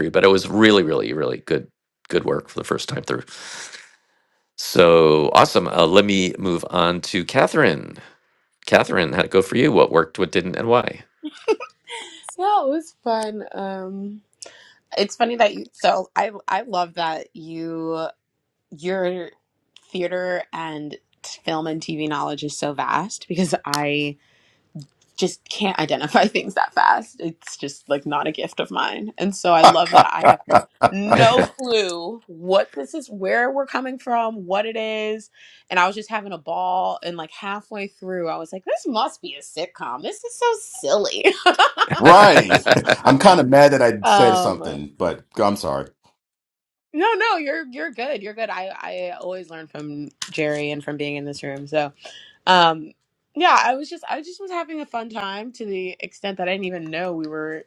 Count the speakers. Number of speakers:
3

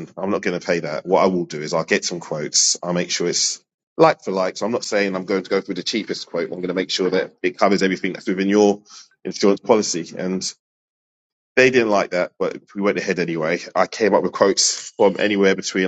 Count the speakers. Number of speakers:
1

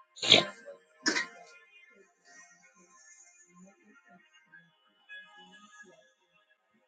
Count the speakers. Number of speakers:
0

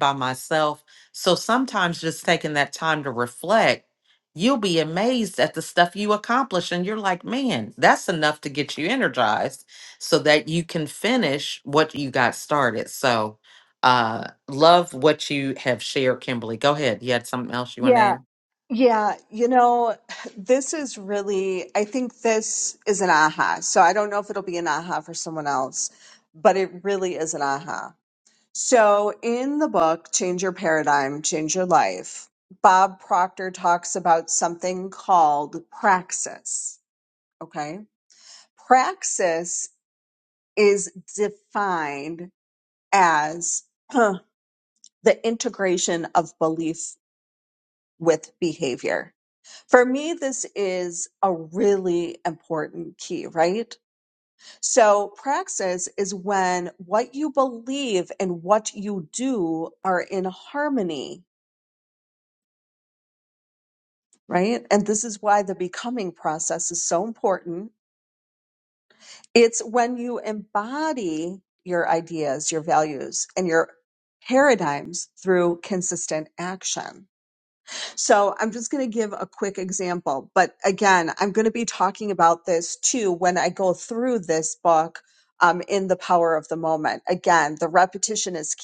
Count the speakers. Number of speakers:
2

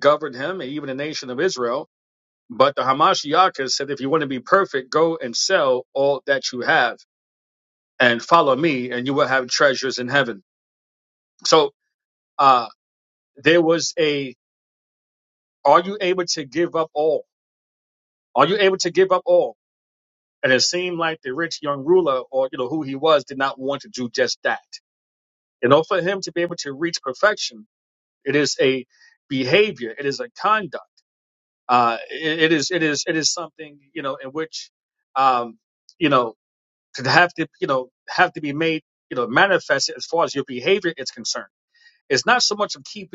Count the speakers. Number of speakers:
1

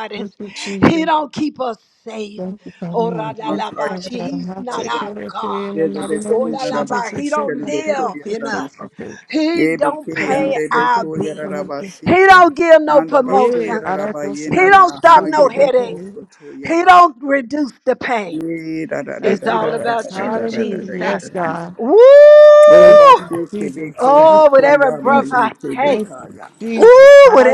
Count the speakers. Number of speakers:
3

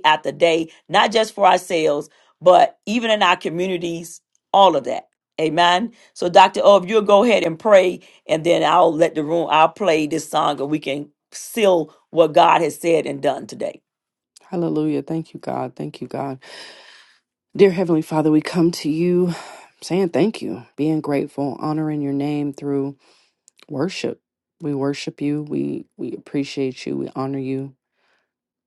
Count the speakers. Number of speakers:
2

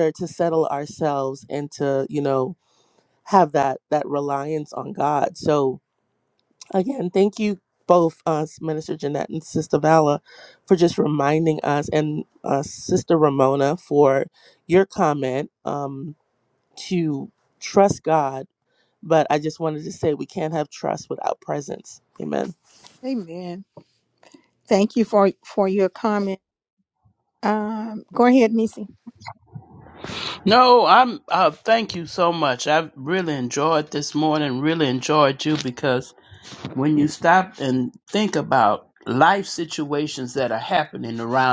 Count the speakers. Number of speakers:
3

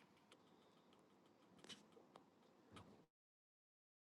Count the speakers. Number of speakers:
0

